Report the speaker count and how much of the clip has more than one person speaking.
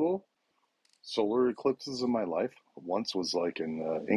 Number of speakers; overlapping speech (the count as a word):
one, no overlap